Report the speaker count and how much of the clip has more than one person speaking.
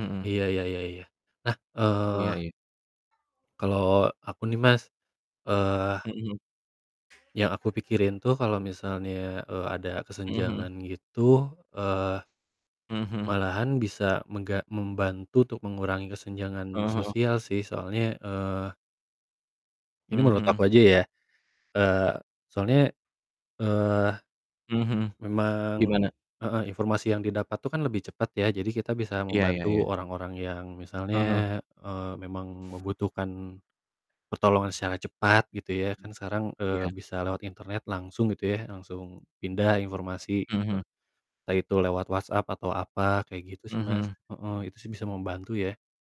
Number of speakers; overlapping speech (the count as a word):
two, about 8%